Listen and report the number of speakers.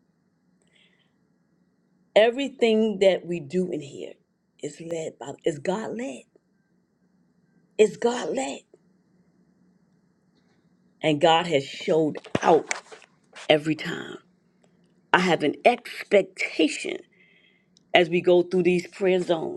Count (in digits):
1